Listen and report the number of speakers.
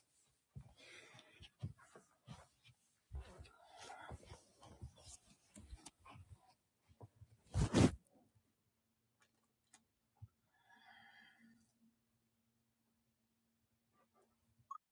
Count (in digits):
0